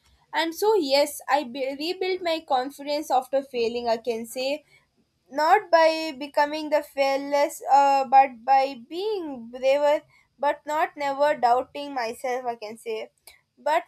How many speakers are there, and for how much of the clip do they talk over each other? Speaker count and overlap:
one, no overlap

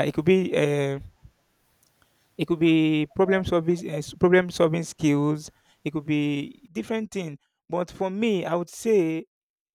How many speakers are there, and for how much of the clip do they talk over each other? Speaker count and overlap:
one, no overlap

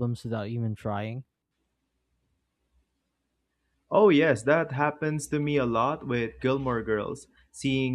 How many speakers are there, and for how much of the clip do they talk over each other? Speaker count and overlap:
two, no overlap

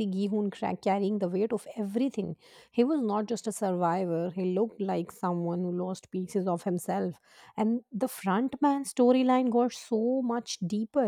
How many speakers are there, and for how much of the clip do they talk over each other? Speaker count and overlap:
one, no overlap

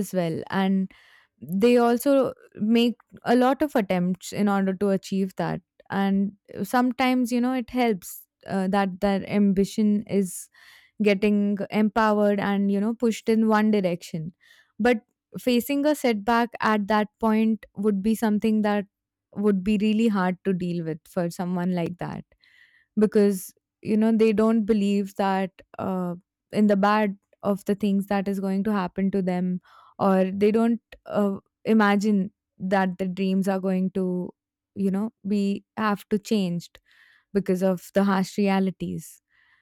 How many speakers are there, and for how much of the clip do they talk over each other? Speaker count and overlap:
one, no overlap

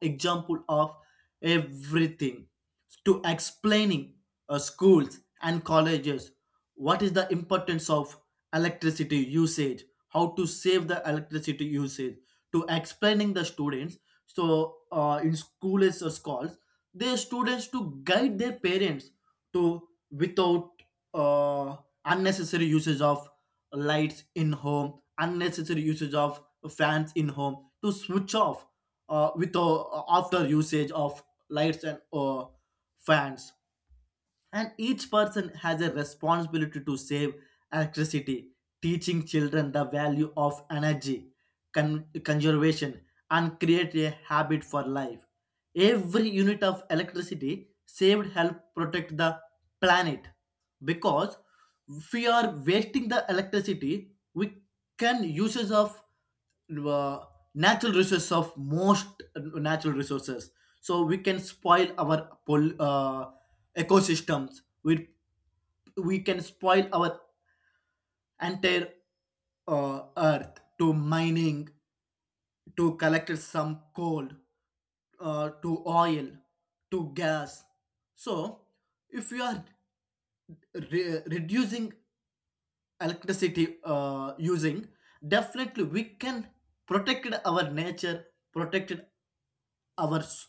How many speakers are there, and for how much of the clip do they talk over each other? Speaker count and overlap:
one, no overlap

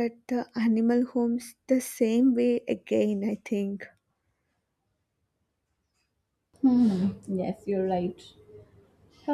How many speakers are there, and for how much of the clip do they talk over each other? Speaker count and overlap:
two, no overlap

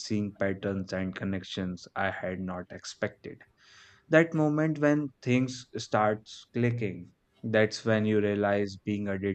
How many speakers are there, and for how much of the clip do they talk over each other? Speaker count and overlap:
one, no overlap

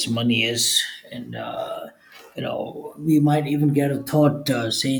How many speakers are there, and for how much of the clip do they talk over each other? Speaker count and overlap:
one, no overlap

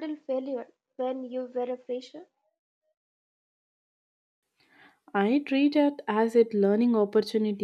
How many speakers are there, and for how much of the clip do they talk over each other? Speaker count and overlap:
two, no overlap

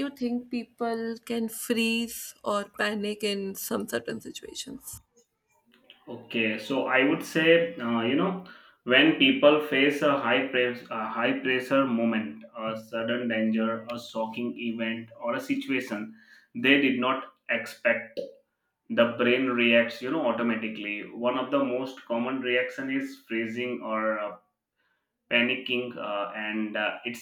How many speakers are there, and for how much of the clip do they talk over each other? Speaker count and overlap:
two, no overlap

